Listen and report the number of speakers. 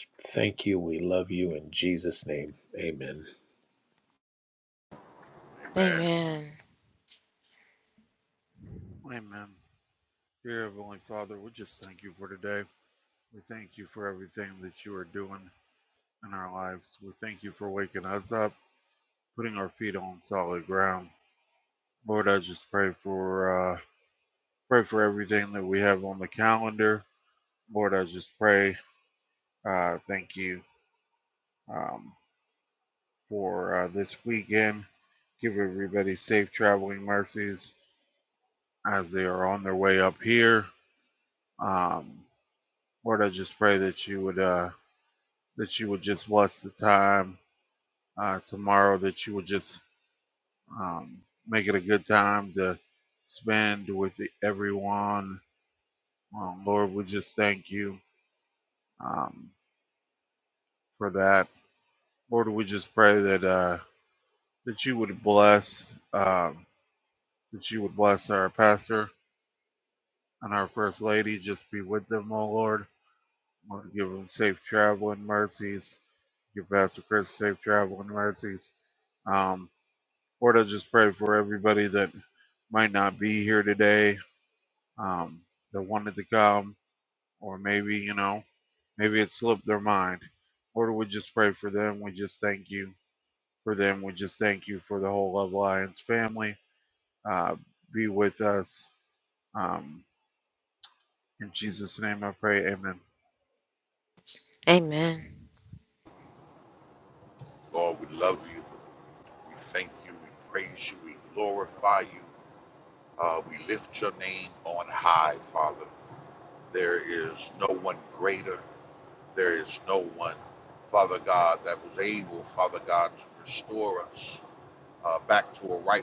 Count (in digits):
4